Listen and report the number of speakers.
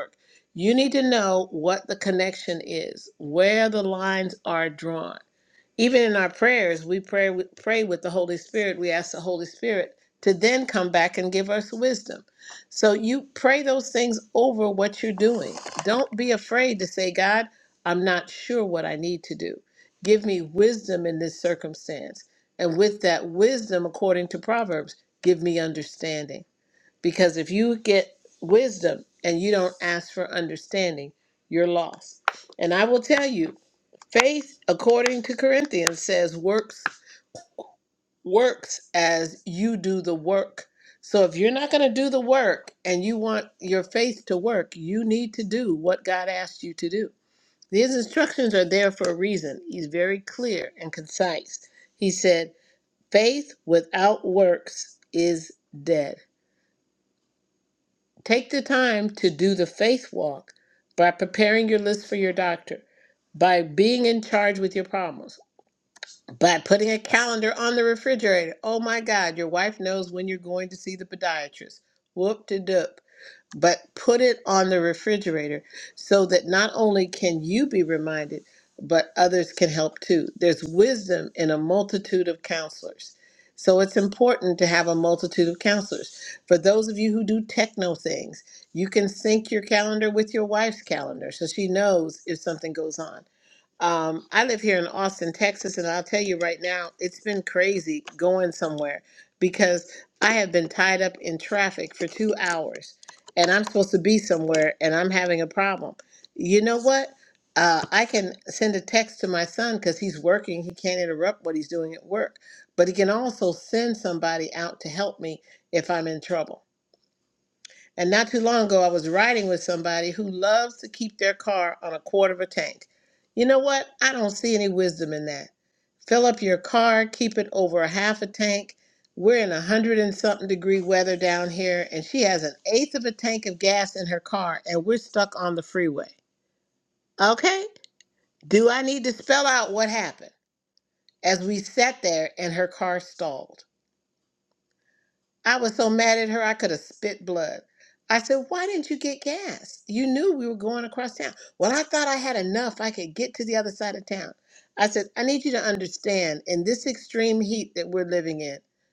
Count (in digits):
1